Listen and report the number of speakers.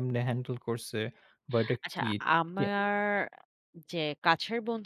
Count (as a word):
two